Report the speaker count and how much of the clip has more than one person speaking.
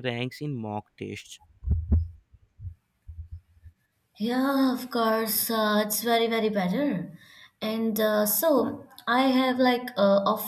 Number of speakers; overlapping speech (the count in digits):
2, no overlap